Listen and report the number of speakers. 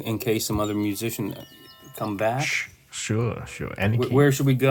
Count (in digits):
2